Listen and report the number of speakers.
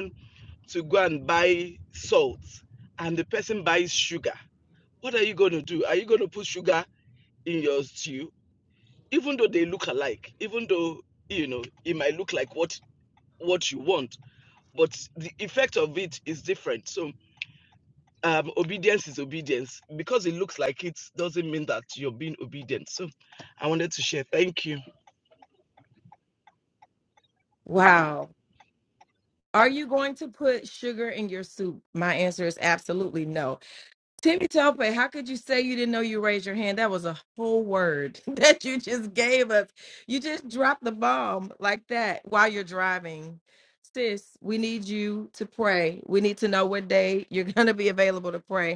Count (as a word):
two